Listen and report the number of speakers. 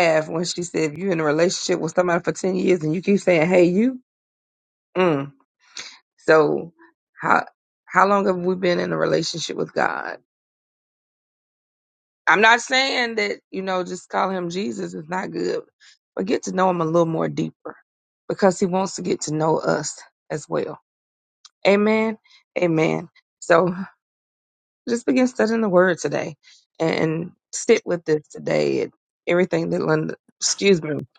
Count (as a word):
one